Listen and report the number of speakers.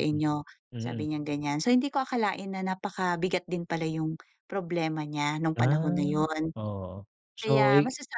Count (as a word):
two